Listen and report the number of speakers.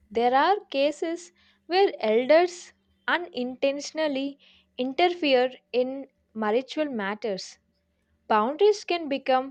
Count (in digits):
1